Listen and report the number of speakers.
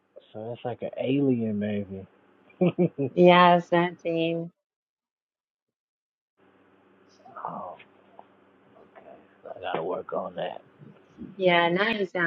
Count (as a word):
two